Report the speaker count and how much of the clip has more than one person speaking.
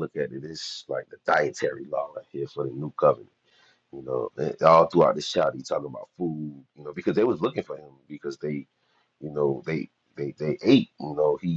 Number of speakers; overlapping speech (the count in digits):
1, no overlap